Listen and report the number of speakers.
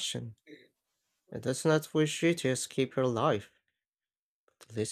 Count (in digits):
1